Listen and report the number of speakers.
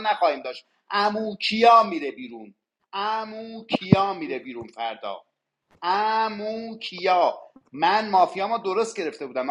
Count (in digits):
1